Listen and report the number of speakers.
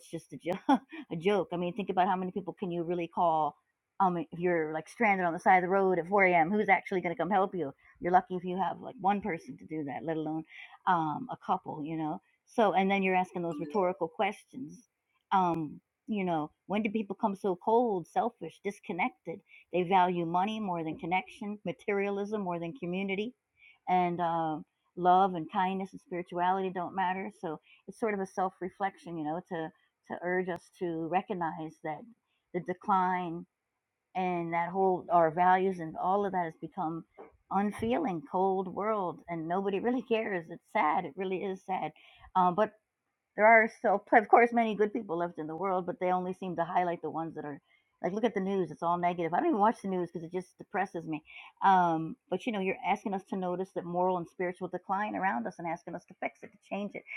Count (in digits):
1